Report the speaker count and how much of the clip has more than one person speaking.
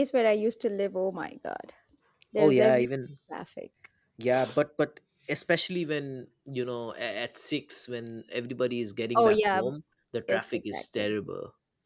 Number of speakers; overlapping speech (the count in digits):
2, about 15%